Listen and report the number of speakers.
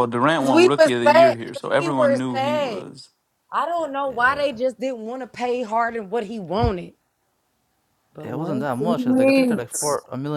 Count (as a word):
three